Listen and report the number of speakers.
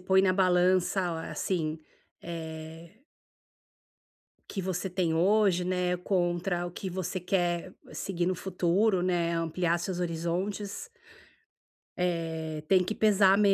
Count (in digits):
1